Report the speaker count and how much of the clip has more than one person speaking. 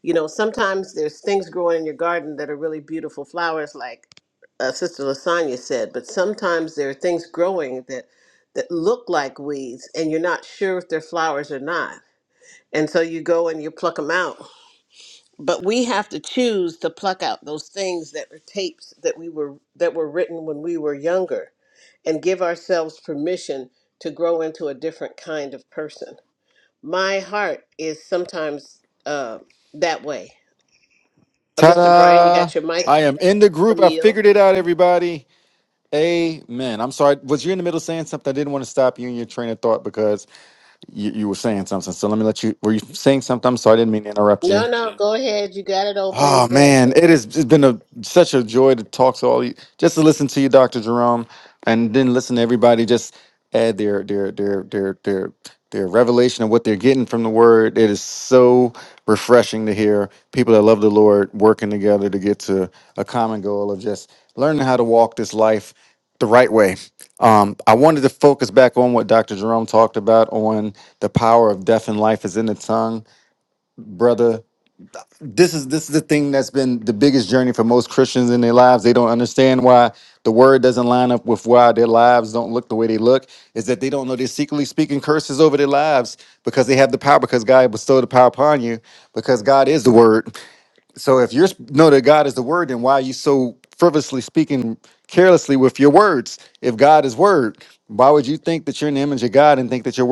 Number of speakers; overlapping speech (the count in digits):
2, about 3%